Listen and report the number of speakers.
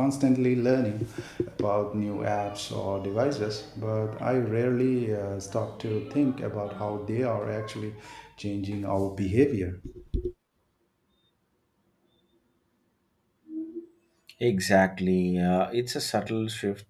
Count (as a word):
two